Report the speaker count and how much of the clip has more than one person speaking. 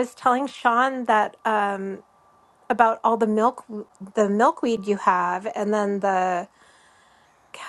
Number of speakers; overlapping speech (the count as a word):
one, no overlap